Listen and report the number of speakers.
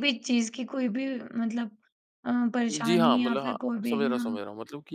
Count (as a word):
two